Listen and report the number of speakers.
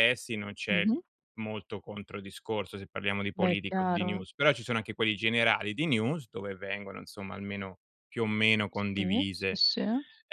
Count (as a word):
two